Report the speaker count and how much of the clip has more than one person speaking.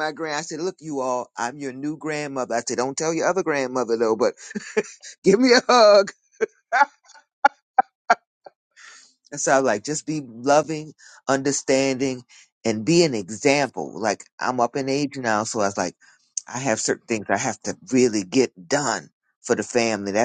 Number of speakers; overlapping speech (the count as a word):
one, no overlap